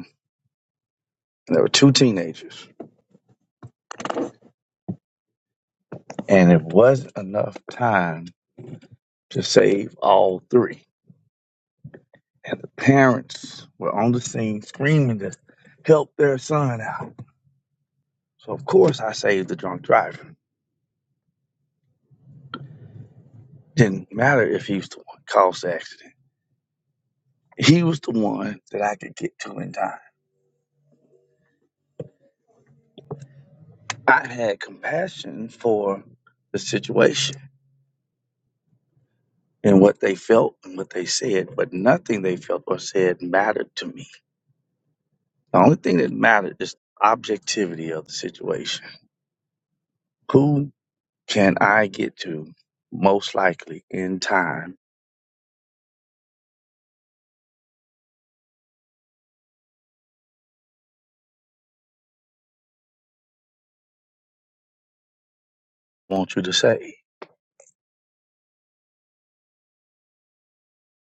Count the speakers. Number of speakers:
one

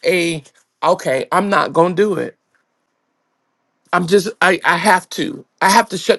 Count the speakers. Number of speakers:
one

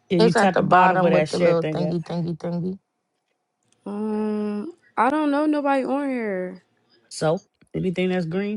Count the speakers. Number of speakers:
three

